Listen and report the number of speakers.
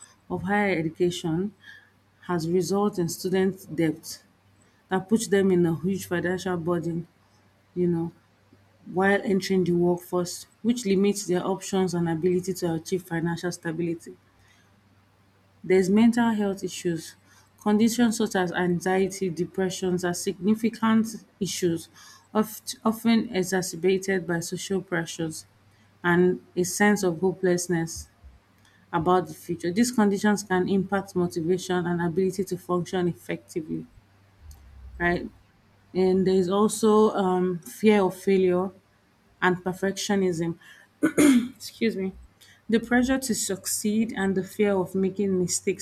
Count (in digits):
1